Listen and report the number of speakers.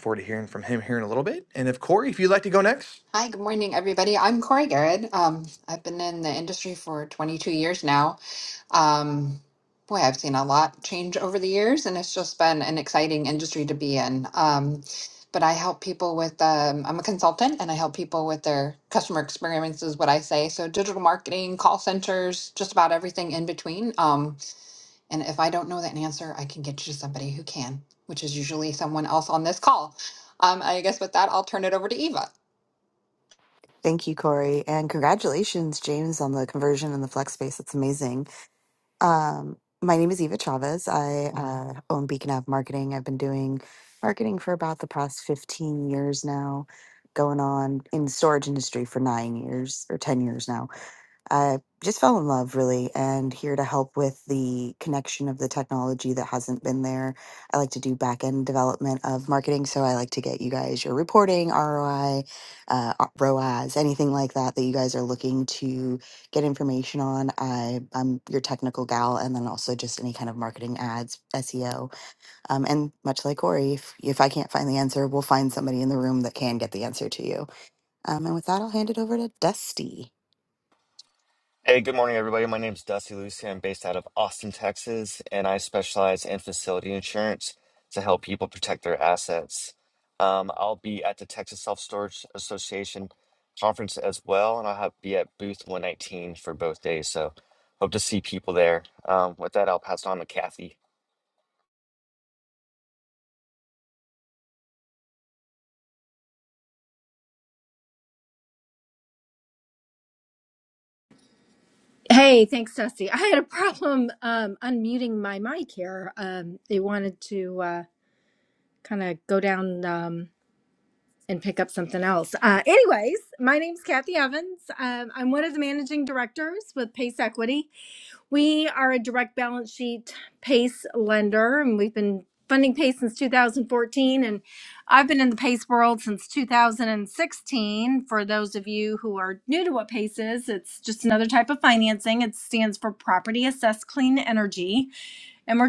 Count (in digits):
5